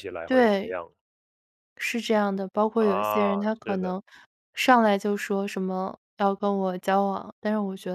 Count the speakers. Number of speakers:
2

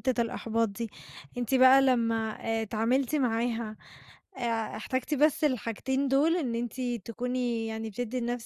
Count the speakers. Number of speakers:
1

